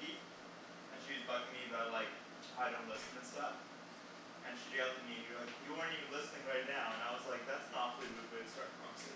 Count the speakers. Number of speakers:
1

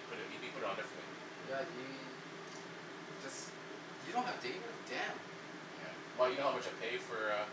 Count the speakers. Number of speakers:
2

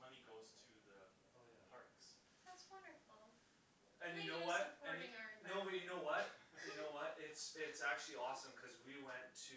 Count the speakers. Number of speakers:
3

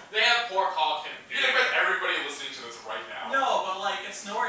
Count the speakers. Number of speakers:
3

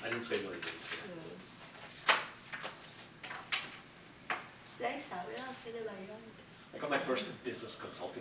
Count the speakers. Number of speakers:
2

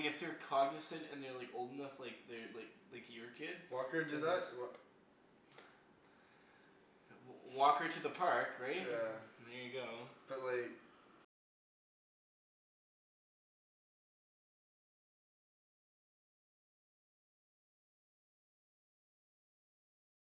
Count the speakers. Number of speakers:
2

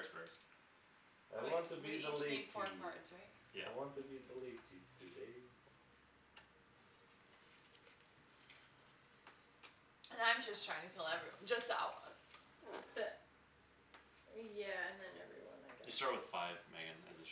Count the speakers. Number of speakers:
4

